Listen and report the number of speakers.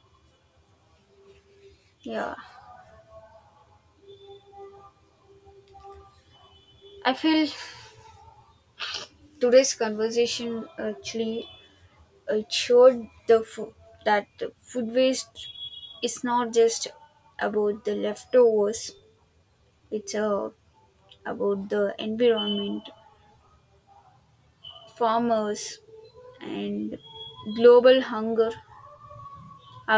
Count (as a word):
one